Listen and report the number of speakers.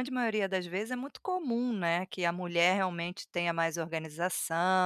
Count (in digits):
1